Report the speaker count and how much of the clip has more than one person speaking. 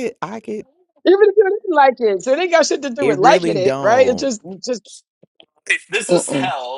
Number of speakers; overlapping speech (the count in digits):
3, about 25%